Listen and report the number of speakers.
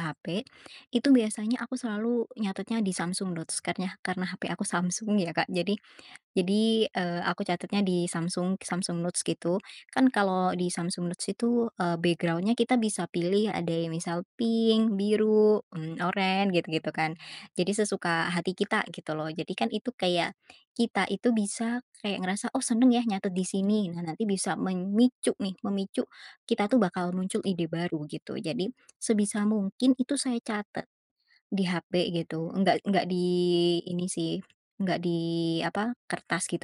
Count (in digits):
1